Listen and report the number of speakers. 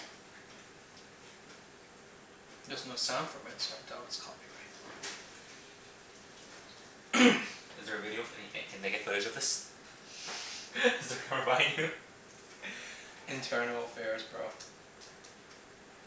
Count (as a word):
two